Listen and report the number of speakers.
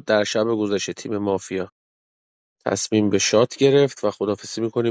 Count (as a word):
one